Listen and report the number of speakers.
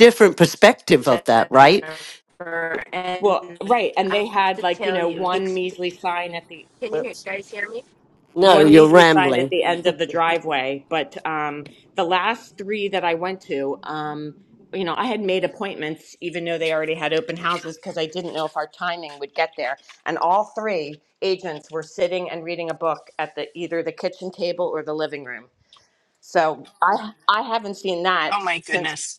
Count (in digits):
3